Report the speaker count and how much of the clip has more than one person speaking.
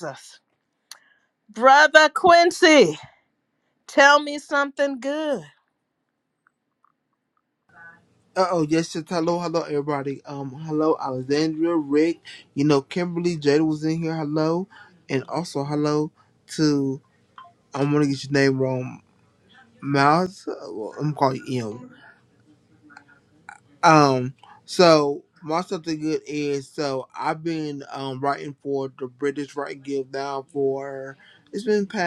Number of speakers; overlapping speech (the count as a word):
two, no overlap